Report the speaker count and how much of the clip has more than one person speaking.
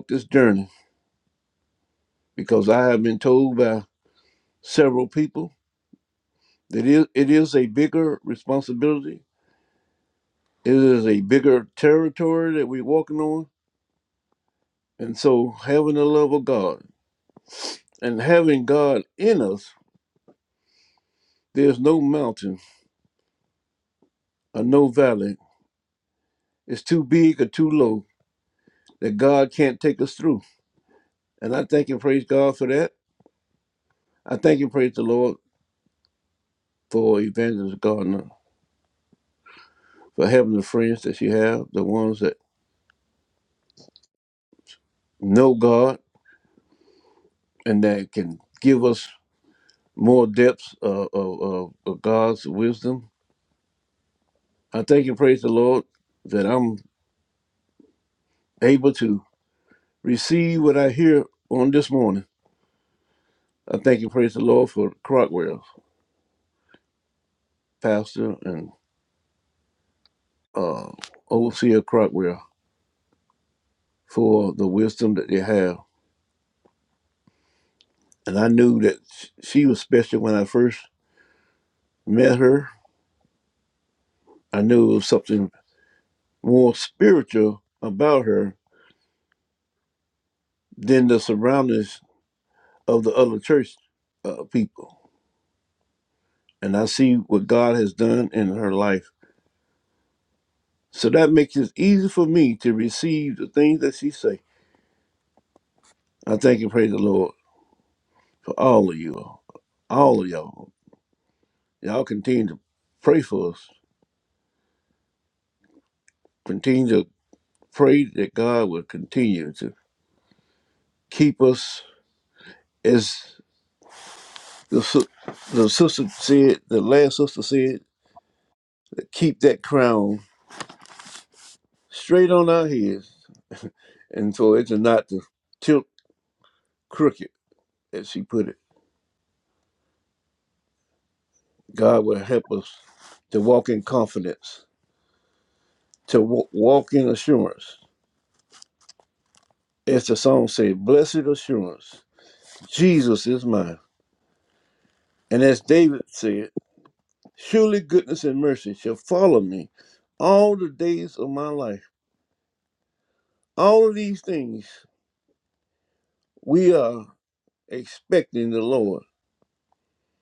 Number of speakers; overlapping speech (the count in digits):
1, no overlap